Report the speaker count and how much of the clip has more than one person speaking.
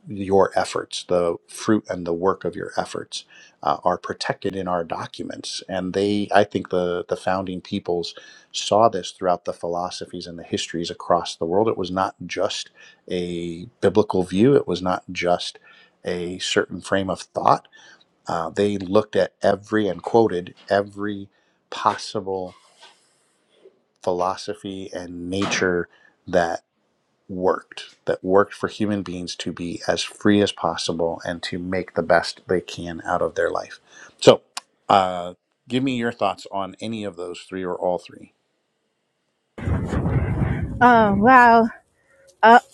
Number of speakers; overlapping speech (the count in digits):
2, no overlap